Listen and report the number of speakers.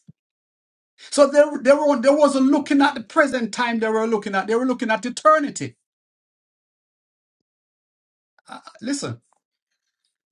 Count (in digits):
1